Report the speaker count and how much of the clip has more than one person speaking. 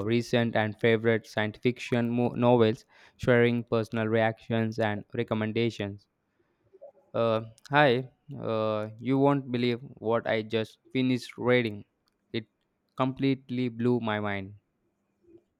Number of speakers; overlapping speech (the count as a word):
one, no overlap